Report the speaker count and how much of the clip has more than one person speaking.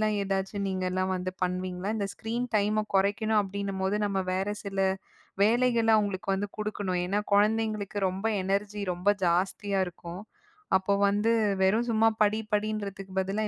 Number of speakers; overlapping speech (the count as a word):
one, no overlap